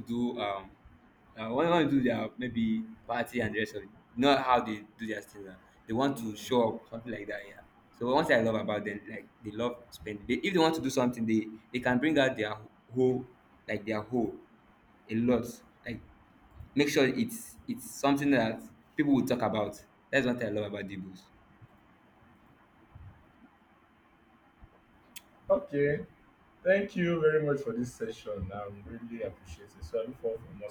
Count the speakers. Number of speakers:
2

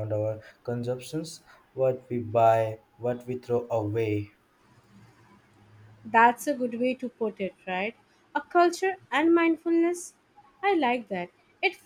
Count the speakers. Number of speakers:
2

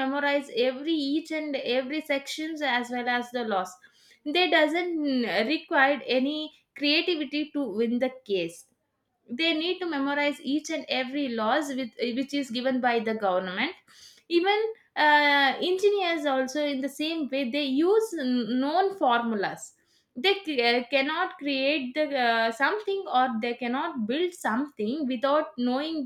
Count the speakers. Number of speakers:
1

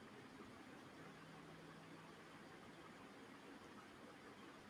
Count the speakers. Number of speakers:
0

